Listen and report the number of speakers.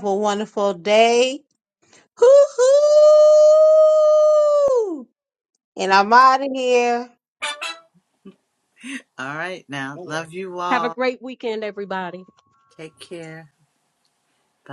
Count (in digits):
3